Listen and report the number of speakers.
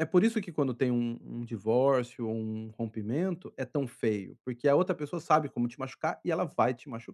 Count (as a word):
one